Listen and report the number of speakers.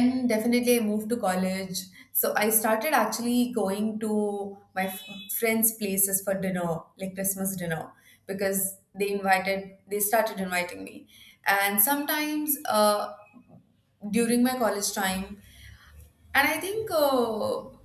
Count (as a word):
one